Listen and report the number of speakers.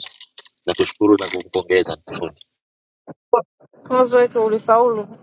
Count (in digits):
2